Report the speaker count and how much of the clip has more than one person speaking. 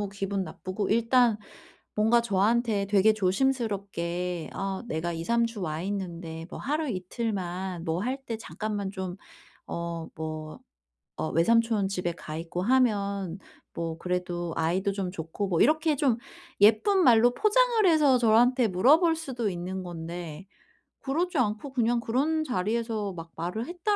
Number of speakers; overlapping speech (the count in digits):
1, no overlap